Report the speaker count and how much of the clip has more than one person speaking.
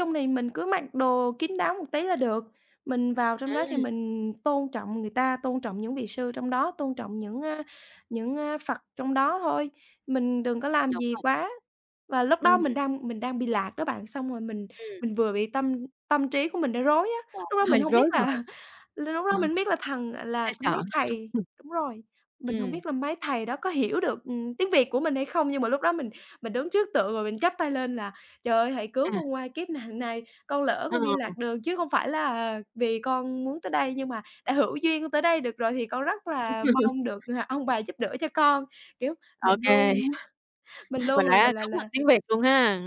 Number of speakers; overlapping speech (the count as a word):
two, about 11%